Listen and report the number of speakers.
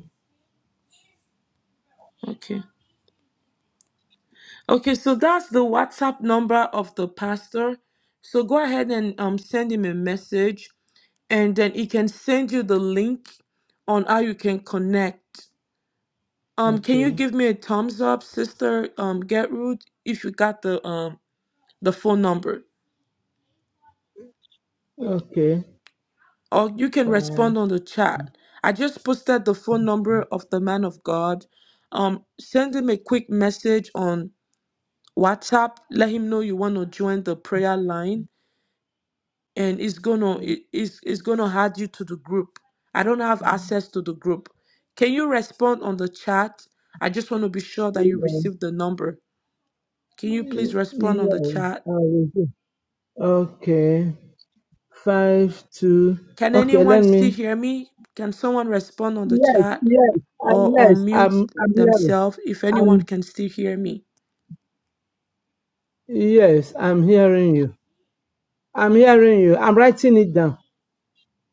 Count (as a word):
two